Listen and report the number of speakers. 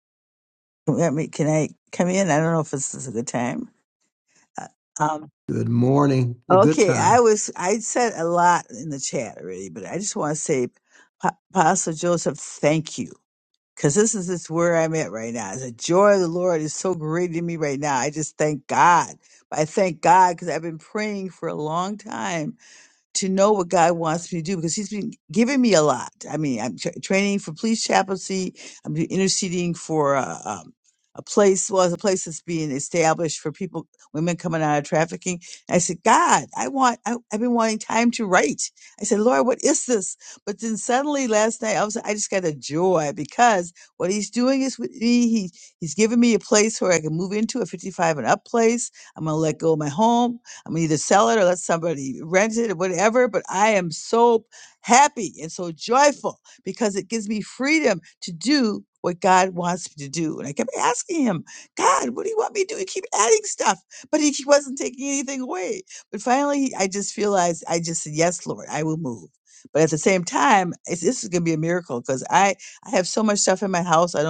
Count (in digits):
2